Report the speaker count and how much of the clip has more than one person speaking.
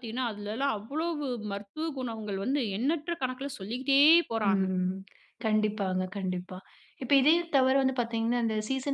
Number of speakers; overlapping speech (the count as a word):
two, about 3%